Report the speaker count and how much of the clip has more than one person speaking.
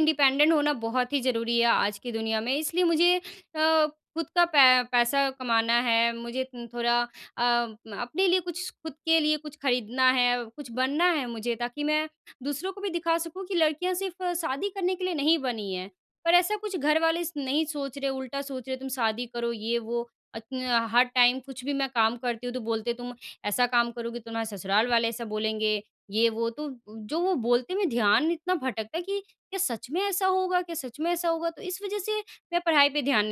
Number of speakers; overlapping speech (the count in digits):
1, no overlap